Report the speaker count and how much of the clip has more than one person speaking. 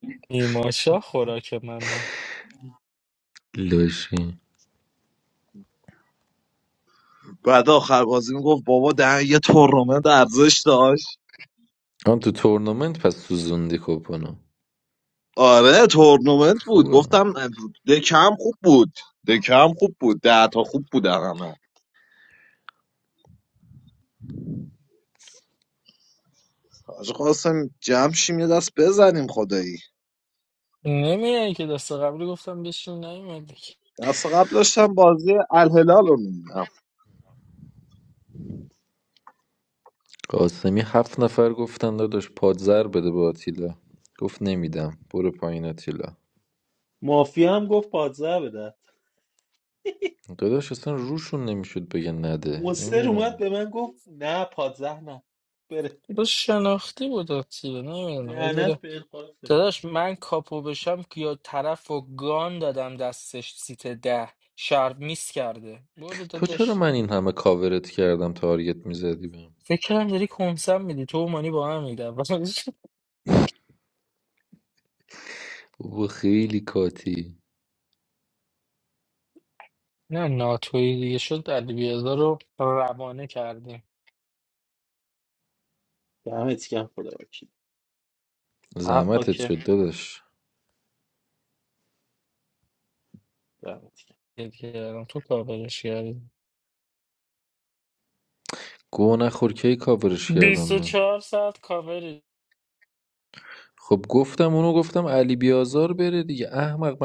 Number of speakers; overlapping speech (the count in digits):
4, about 3%